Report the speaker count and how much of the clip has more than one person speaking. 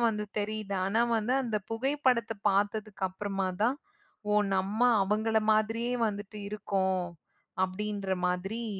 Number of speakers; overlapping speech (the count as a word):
one, no overlap